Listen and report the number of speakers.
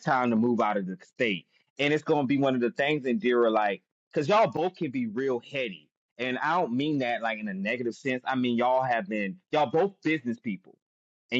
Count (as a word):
one